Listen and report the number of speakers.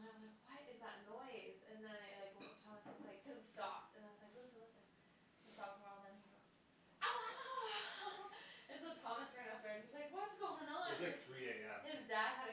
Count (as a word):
two